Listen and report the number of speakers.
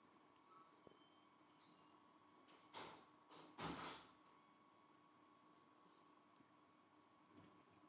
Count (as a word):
zero